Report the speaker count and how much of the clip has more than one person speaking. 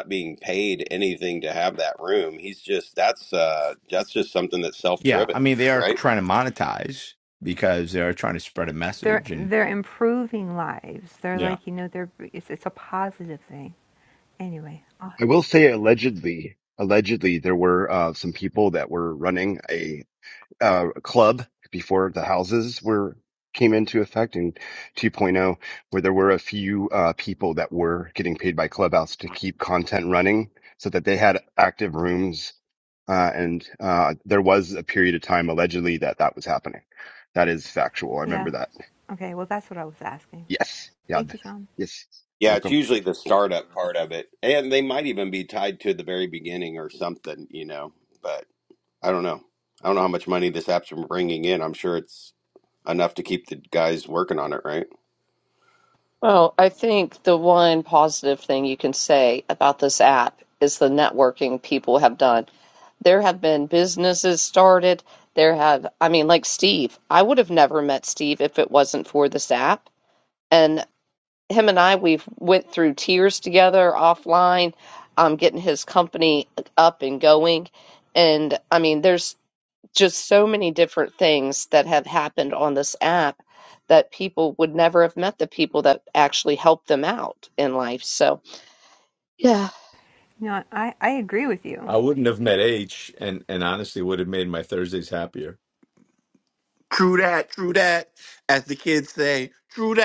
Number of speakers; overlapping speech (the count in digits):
6, about 2%